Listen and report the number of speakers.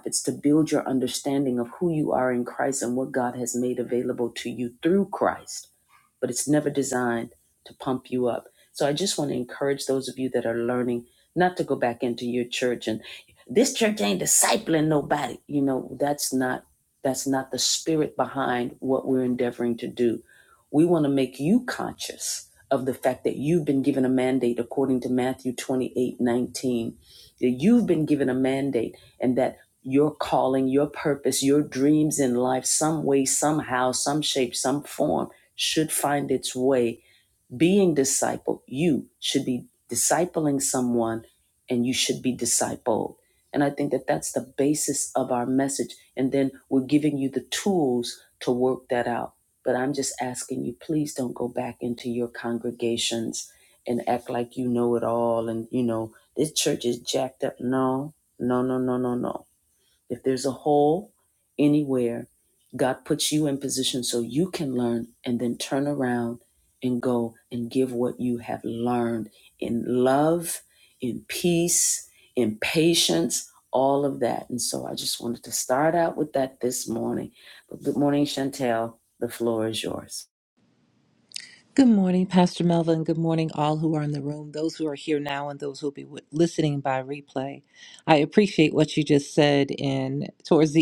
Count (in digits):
2